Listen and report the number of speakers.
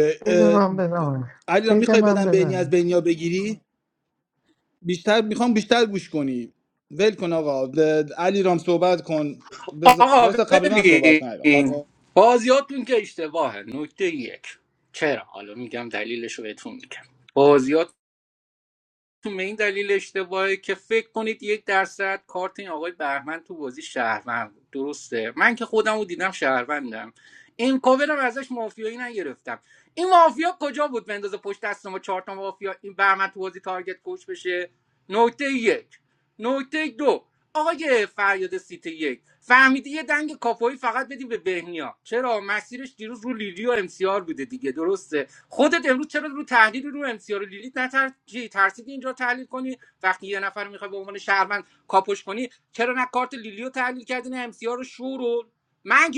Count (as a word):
three